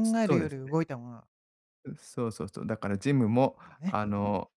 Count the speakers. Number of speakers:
2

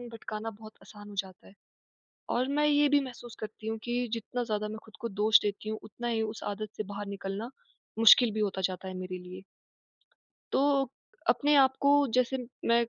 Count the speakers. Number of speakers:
1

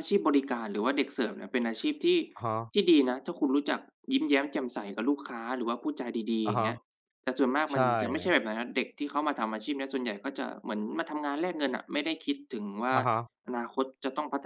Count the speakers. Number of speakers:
2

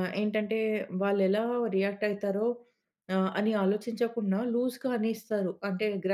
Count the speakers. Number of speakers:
1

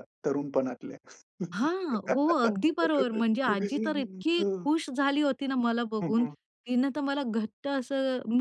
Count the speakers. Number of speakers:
2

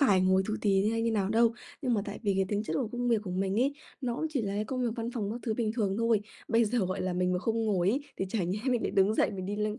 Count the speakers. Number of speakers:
1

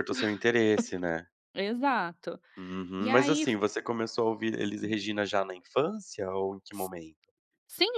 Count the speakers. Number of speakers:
2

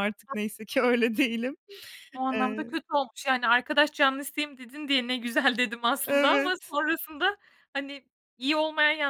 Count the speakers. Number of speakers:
2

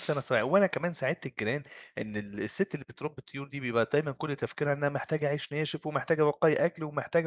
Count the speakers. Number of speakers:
1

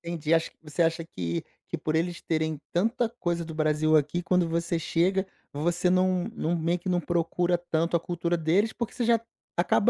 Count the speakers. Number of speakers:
1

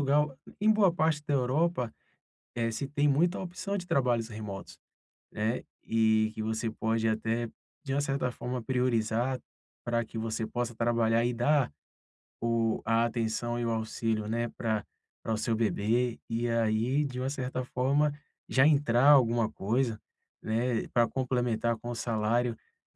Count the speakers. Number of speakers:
1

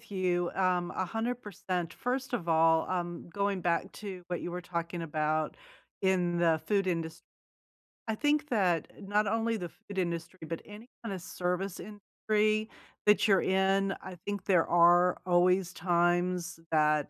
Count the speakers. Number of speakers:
1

